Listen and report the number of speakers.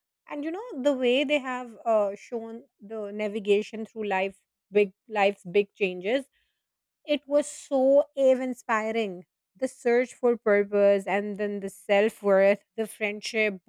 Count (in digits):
1